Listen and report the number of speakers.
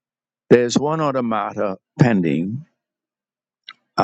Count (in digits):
1